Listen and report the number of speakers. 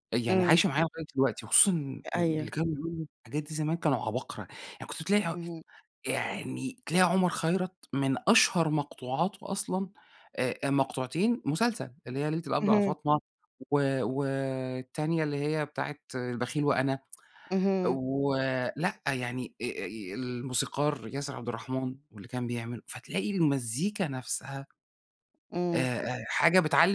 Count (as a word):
two